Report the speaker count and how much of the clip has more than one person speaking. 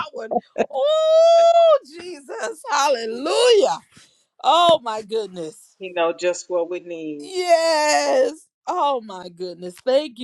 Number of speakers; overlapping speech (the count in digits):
2, under 1%